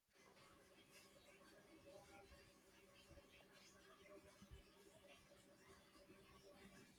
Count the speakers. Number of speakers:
0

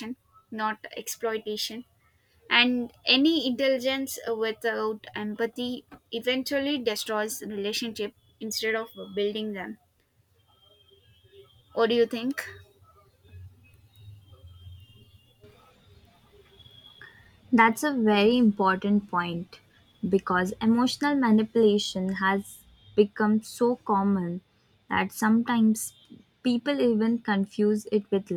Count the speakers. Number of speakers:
2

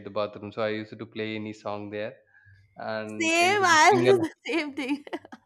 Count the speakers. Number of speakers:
2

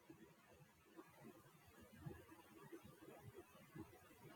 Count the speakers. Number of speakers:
0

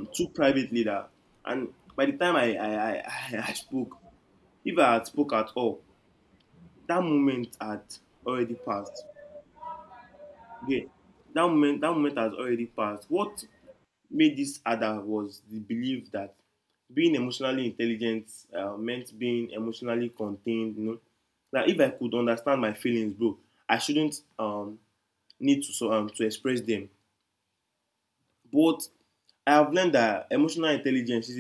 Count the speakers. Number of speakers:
1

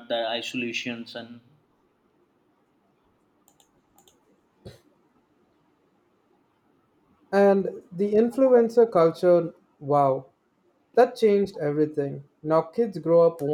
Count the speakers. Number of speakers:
2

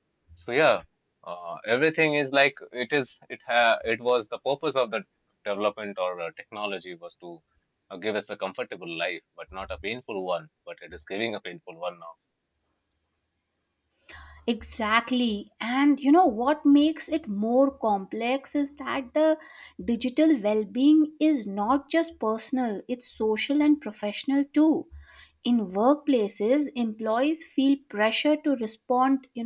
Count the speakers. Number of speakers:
2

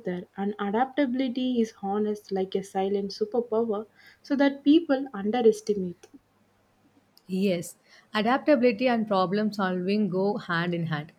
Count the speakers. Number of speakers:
2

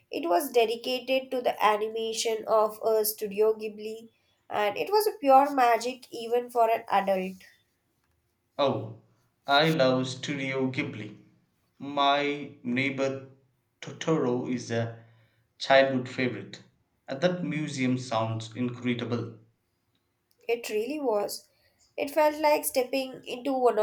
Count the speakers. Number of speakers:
2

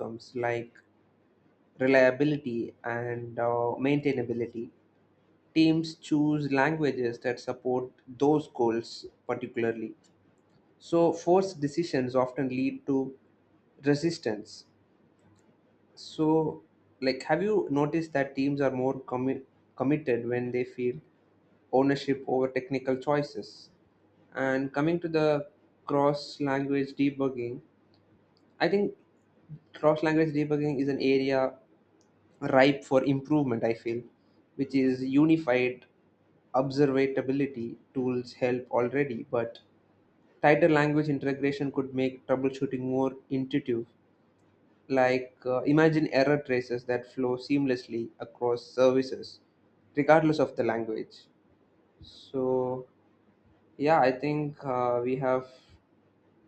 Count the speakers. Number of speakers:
1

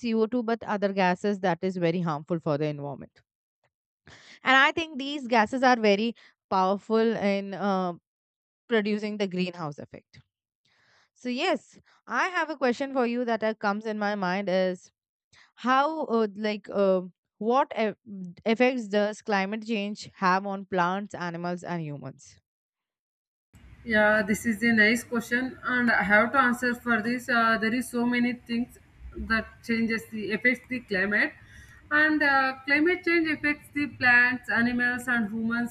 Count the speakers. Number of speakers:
2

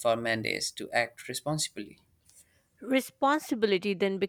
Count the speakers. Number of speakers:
2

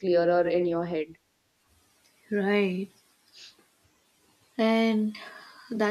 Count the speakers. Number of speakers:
2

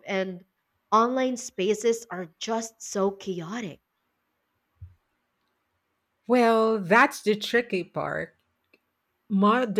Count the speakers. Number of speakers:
2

